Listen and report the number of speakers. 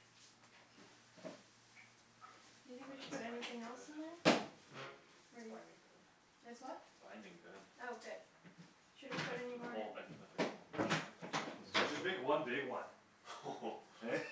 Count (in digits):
3